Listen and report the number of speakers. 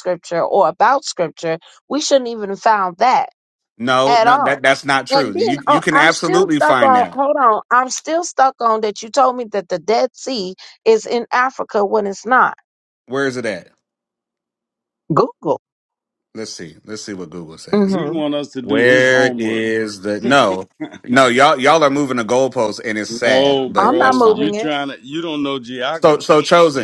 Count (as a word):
three